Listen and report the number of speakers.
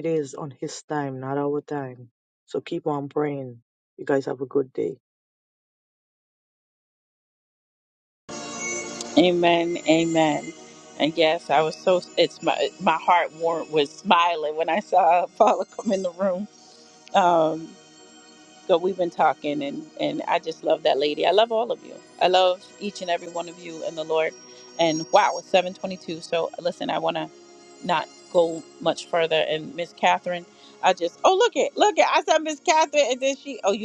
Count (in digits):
2